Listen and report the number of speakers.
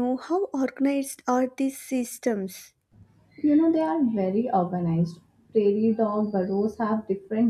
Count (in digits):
2